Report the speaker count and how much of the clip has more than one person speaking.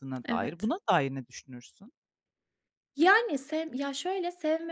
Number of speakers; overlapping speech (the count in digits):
2, about 8%